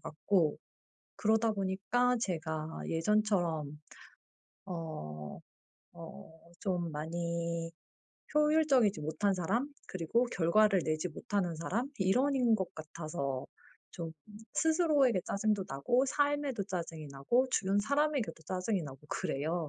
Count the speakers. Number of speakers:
1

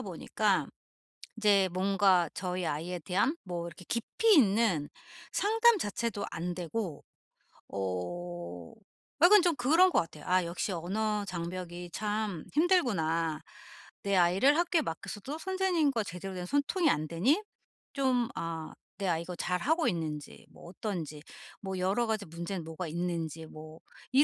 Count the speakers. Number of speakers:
1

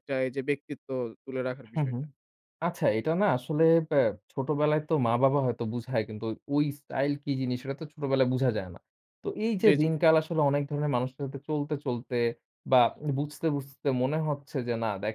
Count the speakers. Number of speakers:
2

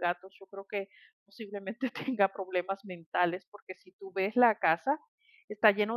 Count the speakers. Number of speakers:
1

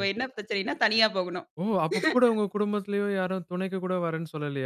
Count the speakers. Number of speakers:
2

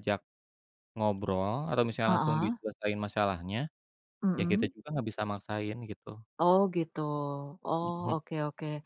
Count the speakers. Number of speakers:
2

